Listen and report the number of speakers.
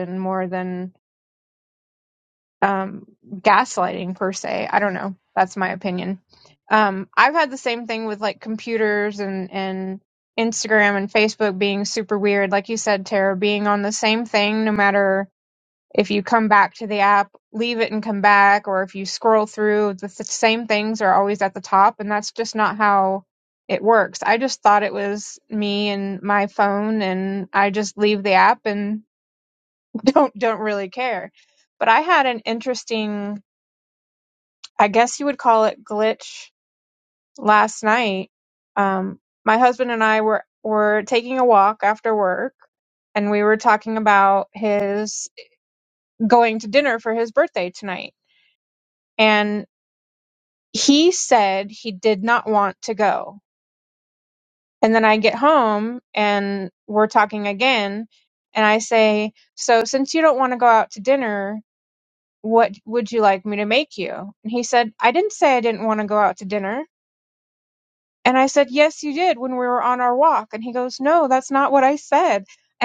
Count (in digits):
1